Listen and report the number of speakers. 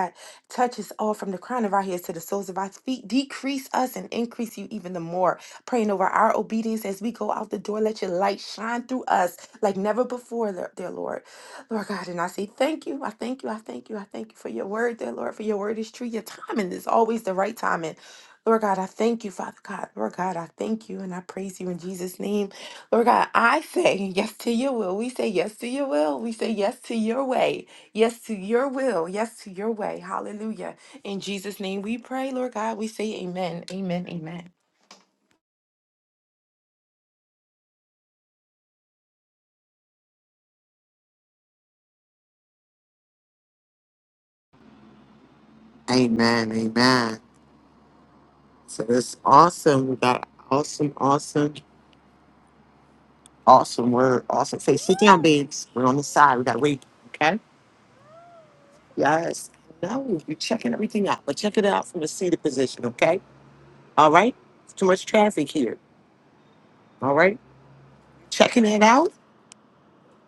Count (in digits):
2